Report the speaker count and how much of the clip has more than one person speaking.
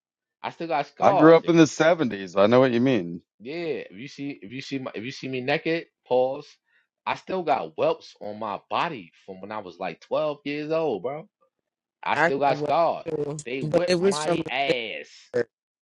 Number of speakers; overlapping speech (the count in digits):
3, about 14%